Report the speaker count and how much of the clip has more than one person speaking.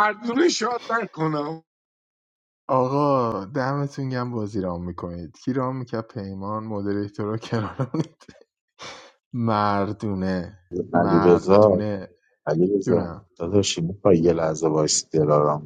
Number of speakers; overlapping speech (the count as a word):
three, about 5%